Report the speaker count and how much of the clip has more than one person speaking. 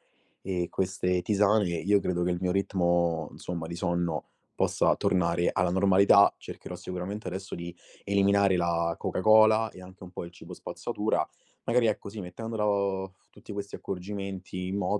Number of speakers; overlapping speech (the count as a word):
one, no overlap